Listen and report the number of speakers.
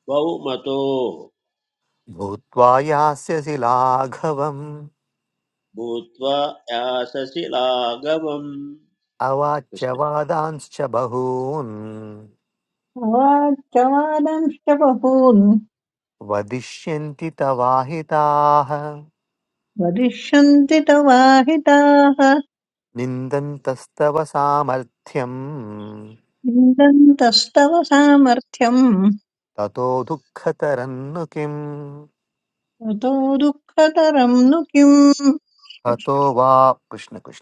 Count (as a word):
three